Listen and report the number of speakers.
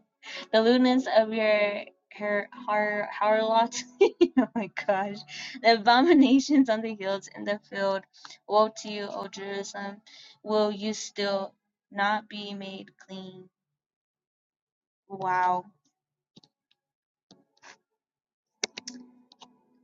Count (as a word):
one